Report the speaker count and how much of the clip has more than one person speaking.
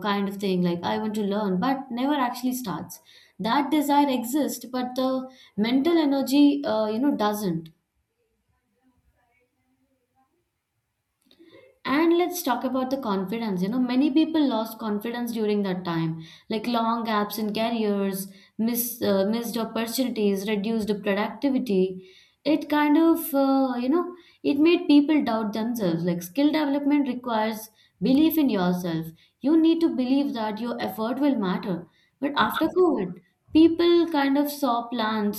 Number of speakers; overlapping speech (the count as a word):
one, no overlap